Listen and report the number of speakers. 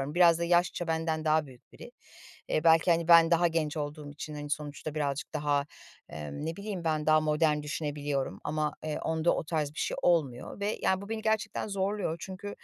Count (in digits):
1